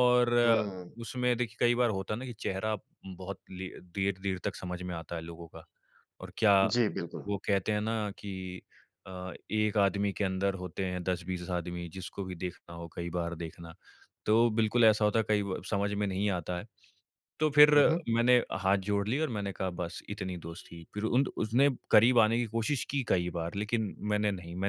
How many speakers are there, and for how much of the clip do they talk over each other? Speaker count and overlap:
2, no overlap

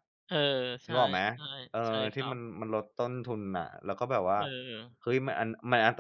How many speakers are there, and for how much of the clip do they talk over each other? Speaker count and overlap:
2, about 13%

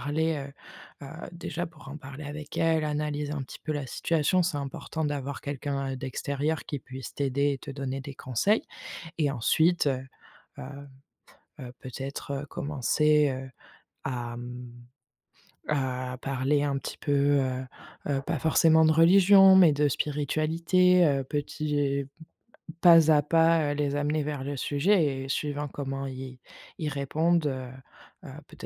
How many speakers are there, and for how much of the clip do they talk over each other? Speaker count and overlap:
1, no overlap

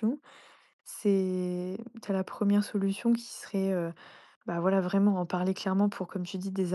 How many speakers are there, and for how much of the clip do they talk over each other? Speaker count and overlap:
1, no overlap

